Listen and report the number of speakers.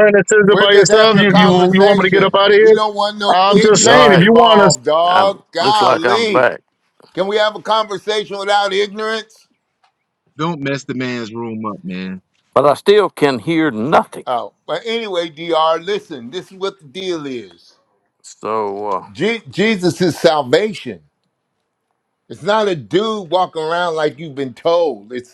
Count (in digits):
4